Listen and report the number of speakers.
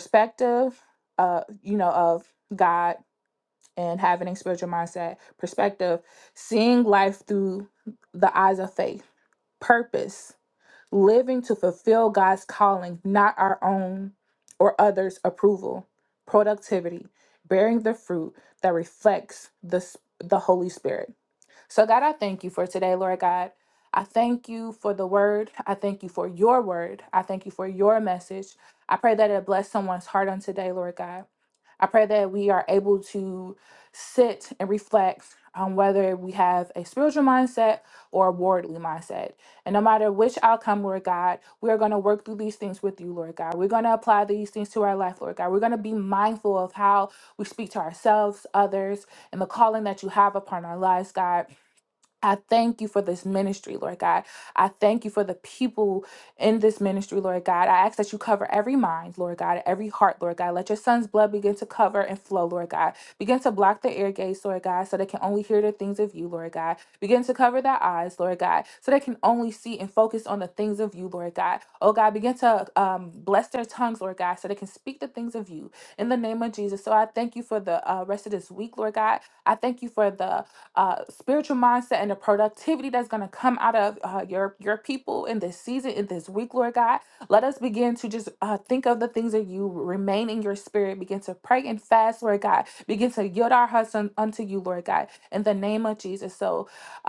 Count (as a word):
one